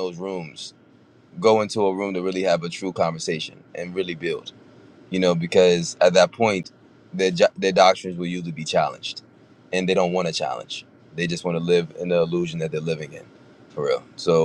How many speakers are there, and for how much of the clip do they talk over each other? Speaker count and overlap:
one, no overlap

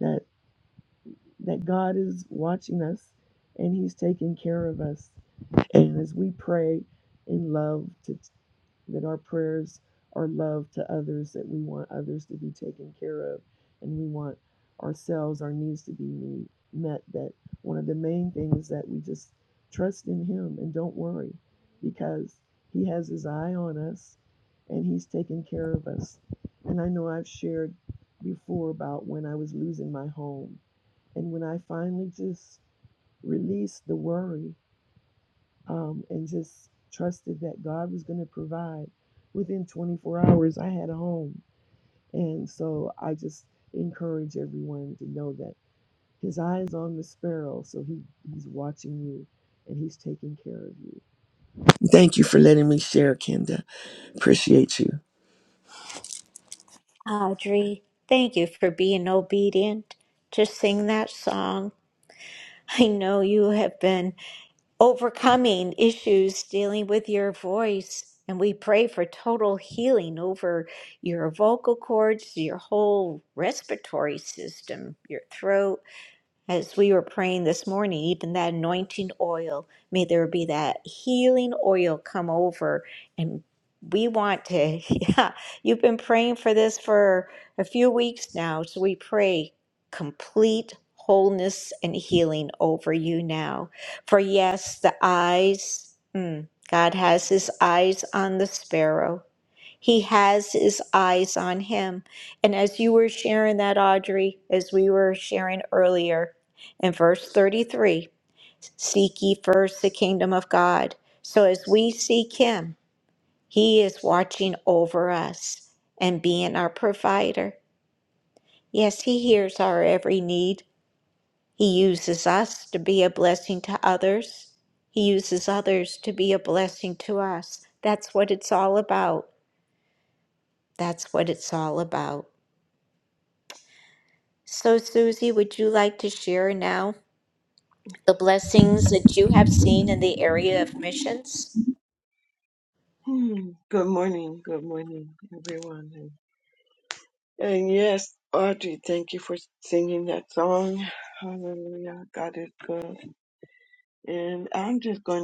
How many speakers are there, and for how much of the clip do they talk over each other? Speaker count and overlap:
three, no overlap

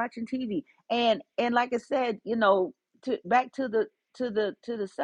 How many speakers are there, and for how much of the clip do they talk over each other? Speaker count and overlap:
one, no overlap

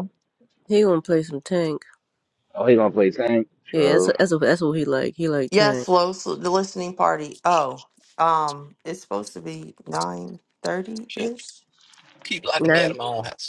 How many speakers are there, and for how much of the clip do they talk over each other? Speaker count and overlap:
four, about 9%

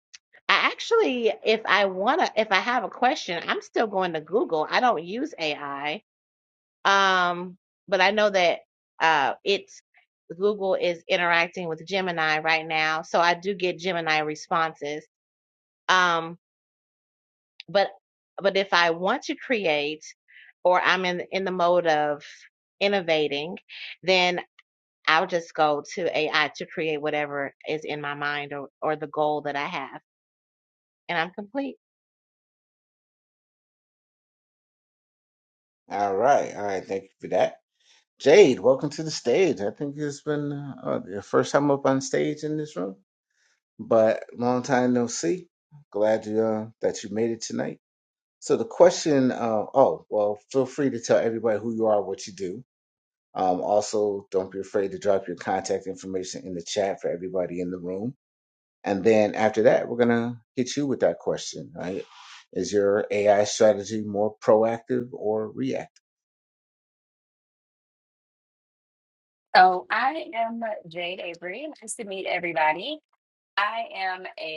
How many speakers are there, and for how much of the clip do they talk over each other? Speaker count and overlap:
three, no overlap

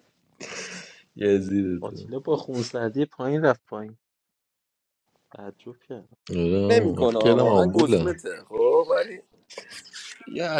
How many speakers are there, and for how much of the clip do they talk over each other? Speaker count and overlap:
three, about 16%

